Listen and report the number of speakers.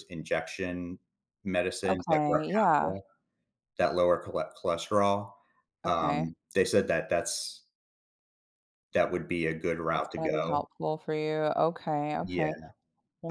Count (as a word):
two